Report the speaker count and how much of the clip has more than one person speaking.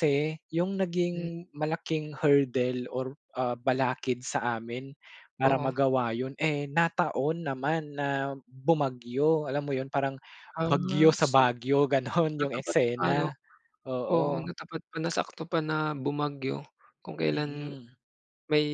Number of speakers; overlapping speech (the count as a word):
two, about 14%